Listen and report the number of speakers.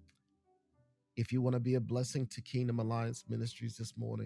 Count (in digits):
1